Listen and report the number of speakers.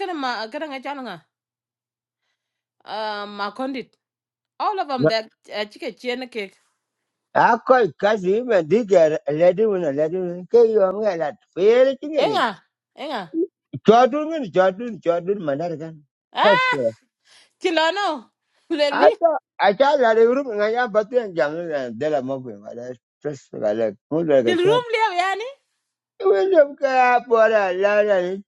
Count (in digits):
2